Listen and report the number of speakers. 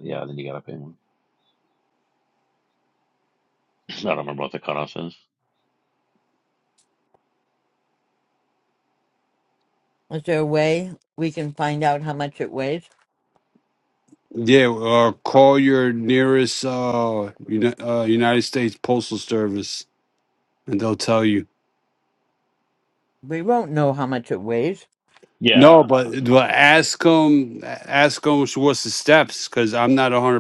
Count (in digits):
3